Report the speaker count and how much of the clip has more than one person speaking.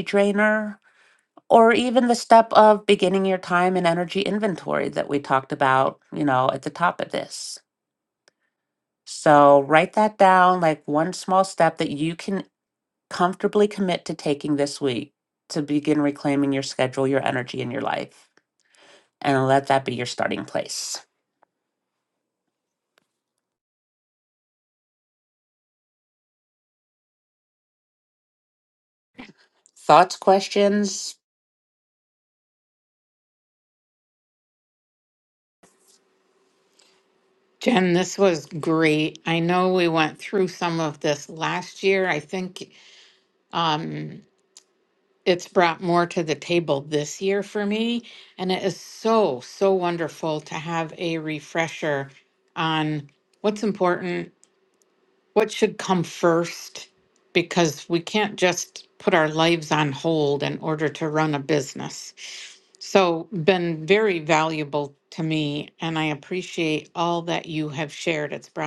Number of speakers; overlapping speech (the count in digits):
2, no overlap